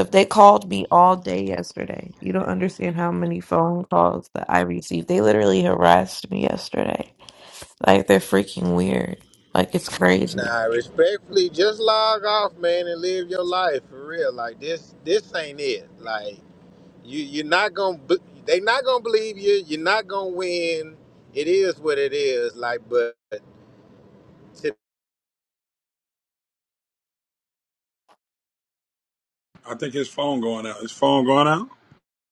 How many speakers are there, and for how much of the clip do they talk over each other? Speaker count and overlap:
3, about 1%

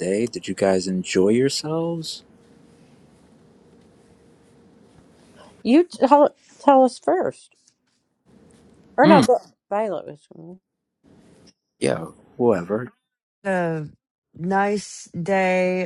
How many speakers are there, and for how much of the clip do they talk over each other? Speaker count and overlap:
3, about 2%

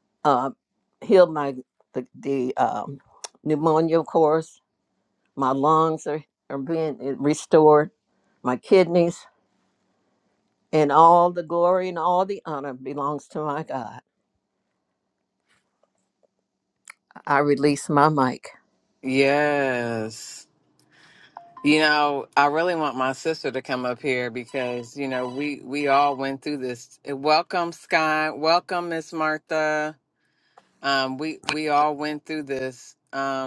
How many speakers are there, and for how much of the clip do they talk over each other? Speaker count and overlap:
2, no overlap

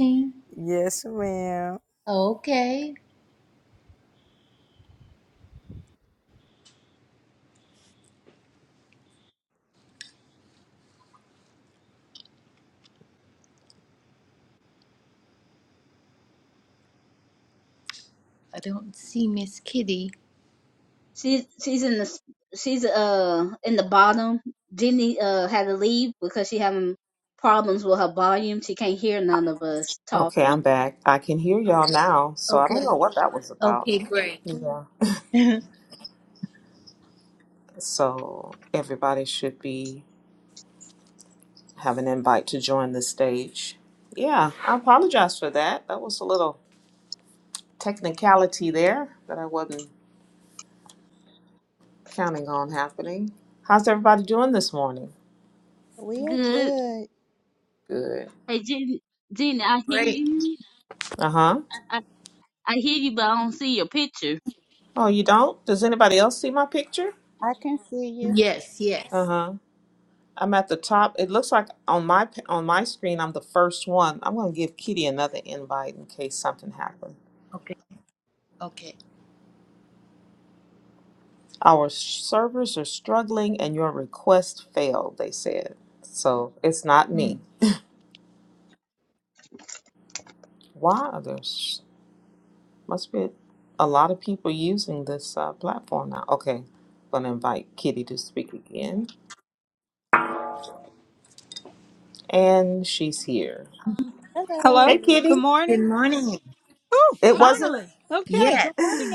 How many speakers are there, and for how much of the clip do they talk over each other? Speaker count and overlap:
6, about 4%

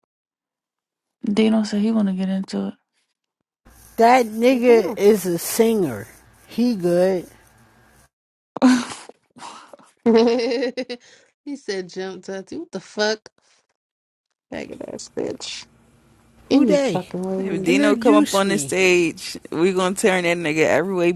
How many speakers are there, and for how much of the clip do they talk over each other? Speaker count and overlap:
4, about 10%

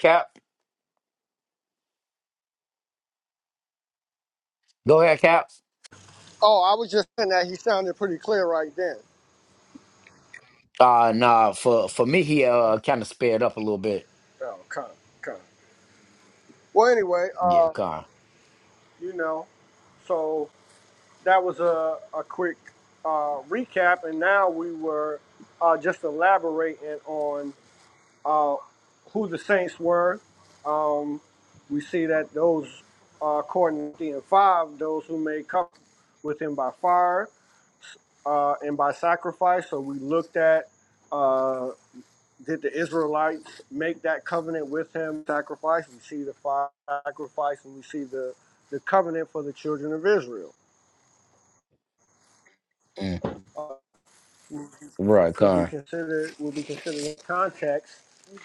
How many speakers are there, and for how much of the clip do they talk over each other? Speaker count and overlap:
2, about 1%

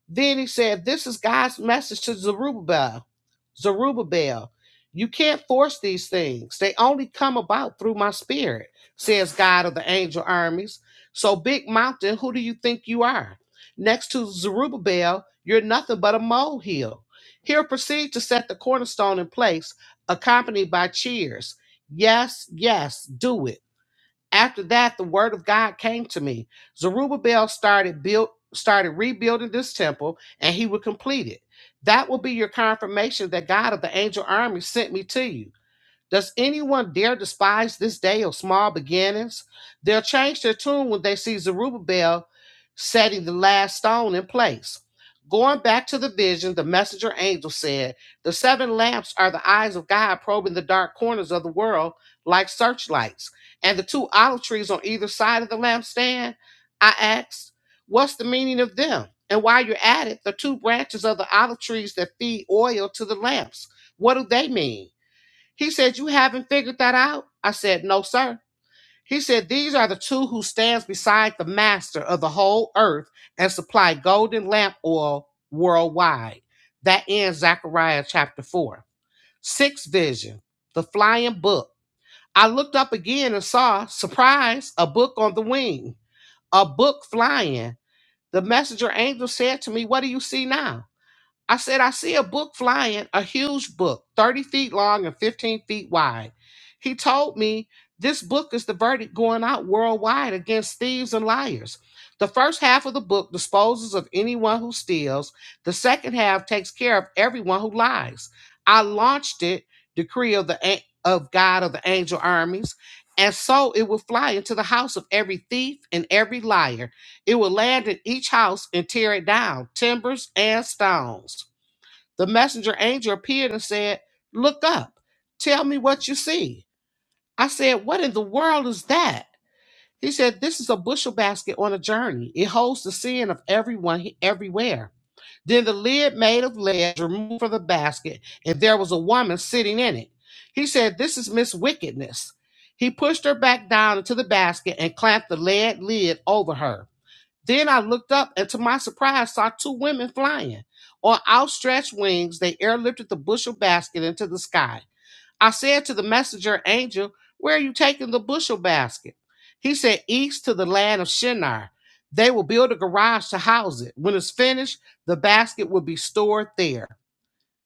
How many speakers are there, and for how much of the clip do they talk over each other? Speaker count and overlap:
1, no overlap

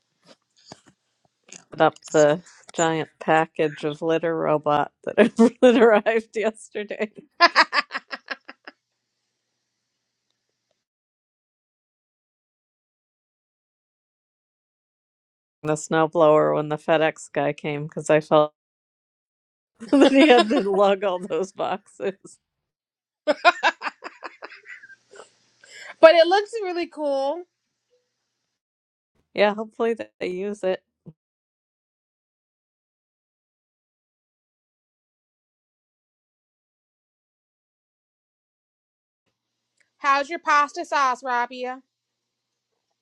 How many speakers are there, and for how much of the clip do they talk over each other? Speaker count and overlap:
2, about 1%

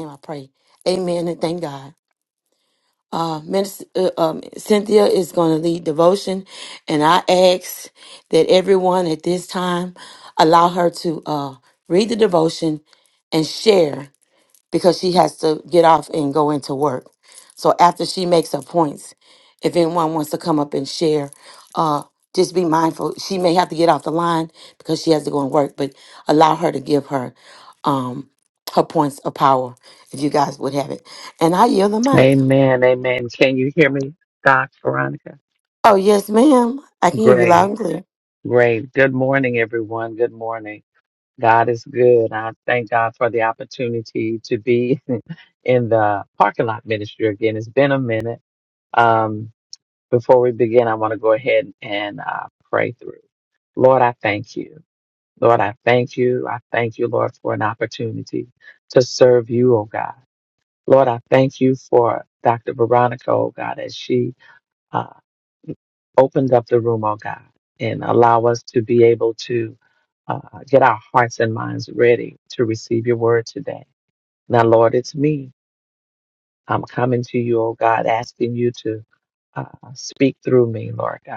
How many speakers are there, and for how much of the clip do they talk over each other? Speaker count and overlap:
2, about 1%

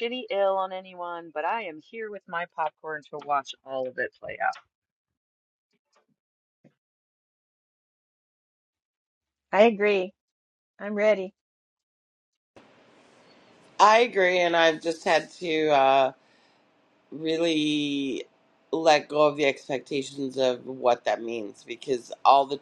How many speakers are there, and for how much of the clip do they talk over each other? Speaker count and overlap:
3, no overlap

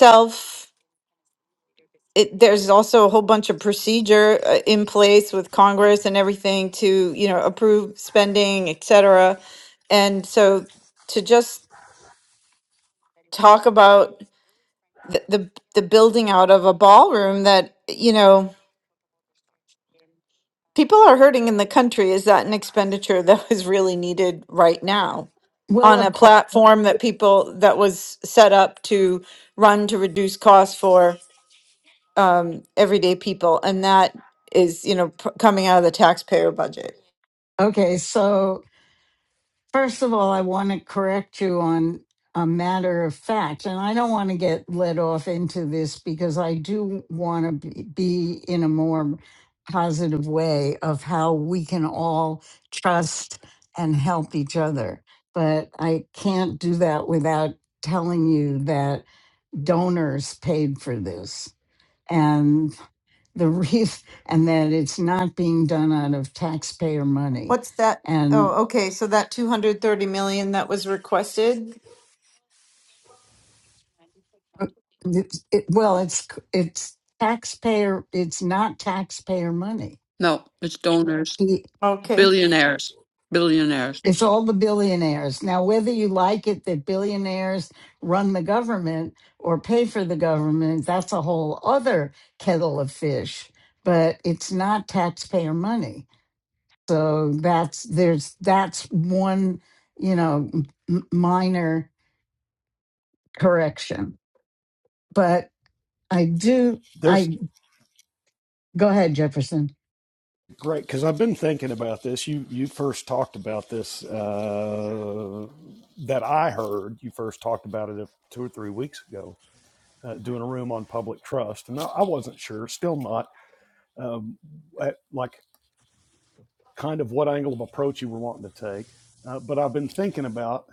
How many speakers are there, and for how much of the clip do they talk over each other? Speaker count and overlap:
4, about 1%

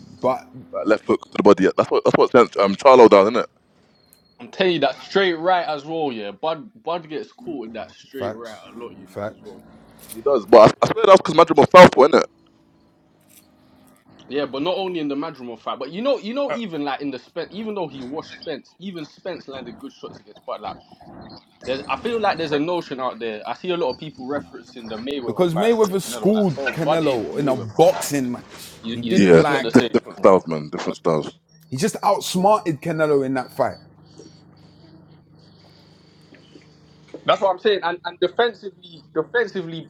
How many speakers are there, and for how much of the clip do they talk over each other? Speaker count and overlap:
3, about 11%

